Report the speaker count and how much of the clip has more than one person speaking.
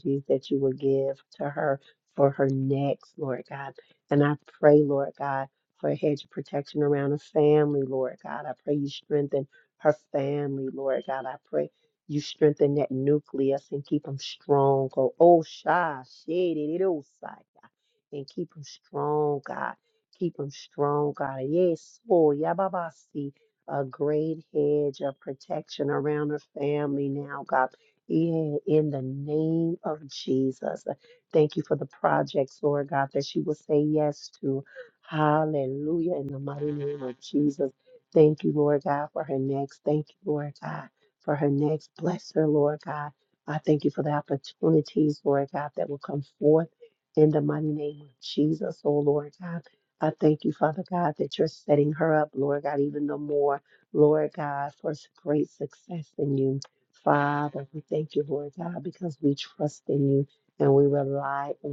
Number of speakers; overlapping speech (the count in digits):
1, no overlap